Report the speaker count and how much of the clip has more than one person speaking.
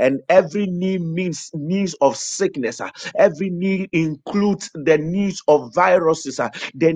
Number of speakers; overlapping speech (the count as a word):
one, no overlap